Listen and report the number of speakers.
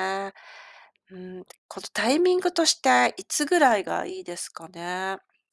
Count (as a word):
one